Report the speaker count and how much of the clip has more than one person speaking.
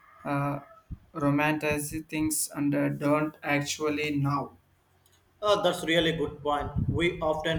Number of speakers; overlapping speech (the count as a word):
two, no overlap